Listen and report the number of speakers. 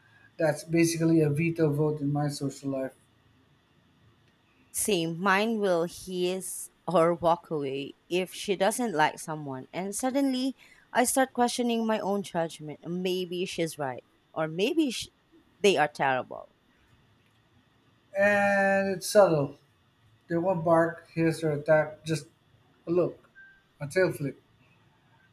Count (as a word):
two